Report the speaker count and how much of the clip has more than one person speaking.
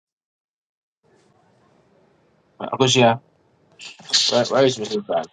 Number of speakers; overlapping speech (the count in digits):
1, no overlap